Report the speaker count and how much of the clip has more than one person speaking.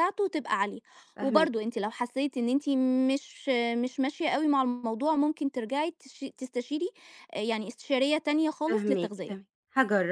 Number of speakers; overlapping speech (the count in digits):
2, about 9%